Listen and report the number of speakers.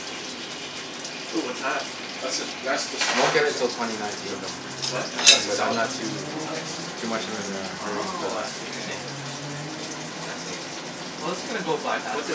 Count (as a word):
four